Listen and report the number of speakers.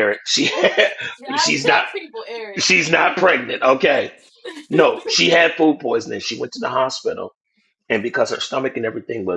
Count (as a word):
two